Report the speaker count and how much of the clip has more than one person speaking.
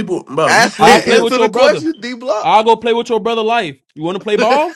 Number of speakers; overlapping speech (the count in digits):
3, about 30%